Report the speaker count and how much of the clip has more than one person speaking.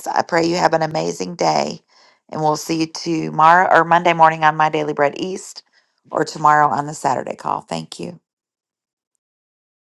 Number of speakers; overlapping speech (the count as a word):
one, no overlap